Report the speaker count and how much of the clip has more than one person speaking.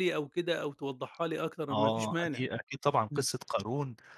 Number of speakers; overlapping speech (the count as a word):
two, about 20%